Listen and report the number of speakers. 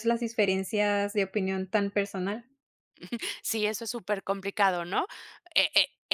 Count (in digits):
2